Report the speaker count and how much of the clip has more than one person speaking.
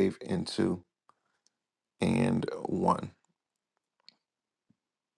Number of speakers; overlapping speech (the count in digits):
1, no overlap